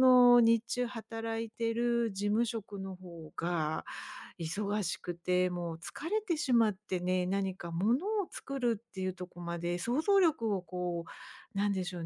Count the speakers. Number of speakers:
one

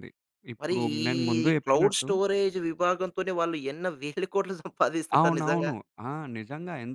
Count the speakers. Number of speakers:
two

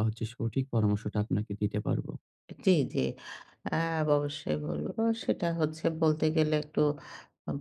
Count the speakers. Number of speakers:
two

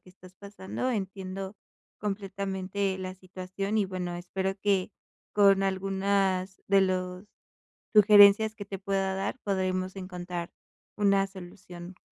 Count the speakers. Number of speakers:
one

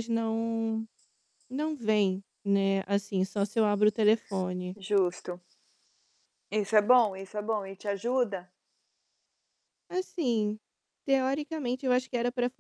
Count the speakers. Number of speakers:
two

